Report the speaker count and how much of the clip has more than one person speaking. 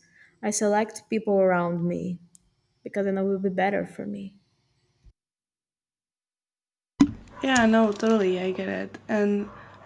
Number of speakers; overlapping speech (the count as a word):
two, no overlap